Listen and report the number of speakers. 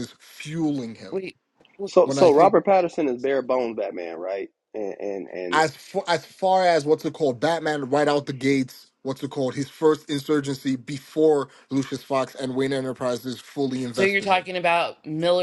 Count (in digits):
3